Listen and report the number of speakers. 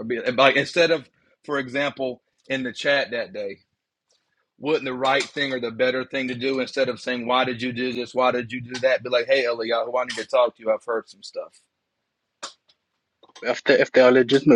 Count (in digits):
2